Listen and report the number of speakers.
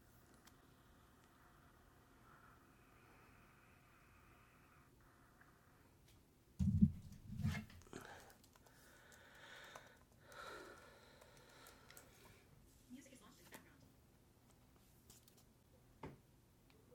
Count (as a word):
zero